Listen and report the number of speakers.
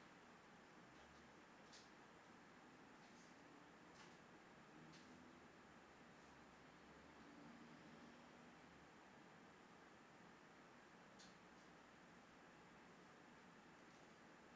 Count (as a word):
zero